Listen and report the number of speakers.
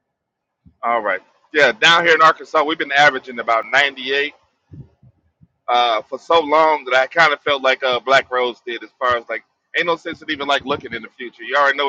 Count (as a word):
one